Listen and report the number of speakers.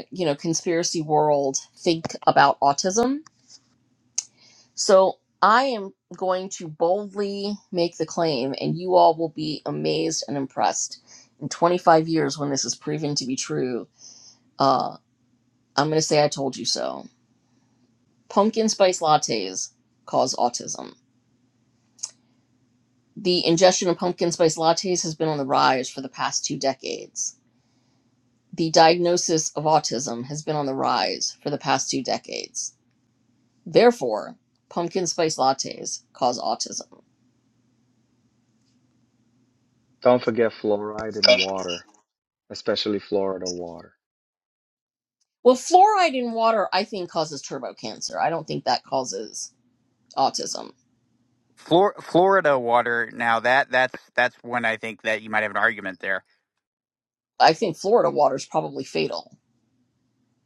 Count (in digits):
3